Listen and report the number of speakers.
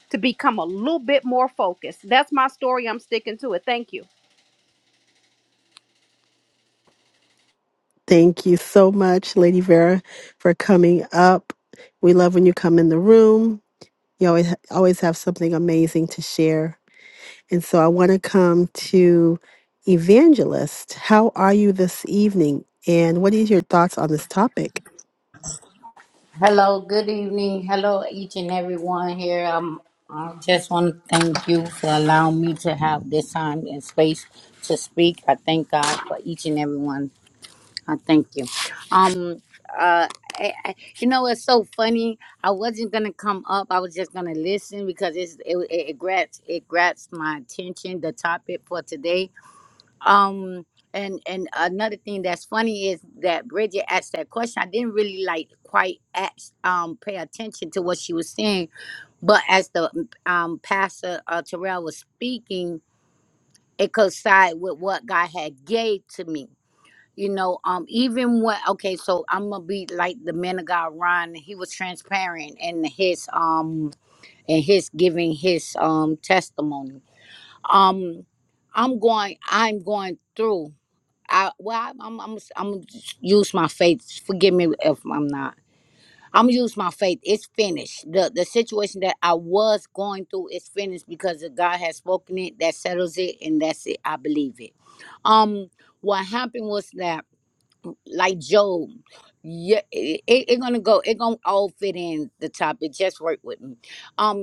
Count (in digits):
3